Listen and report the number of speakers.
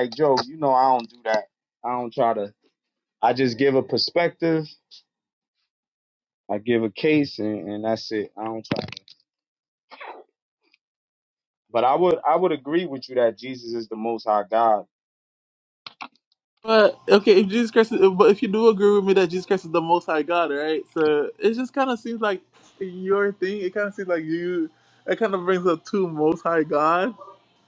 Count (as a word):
two